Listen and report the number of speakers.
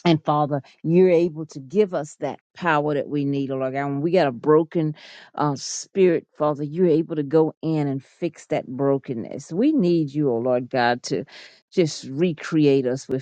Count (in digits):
1